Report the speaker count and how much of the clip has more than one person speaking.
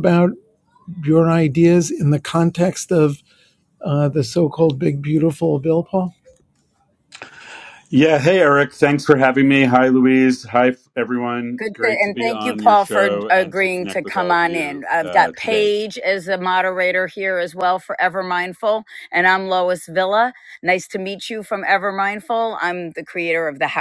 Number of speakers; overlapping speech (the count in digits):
3, about 17%